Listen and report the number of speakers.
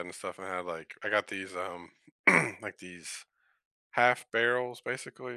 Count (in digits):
1